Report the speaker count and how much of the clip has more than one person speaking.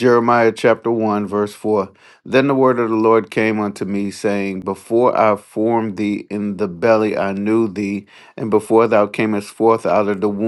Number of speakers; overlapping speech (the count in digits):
1, no overlap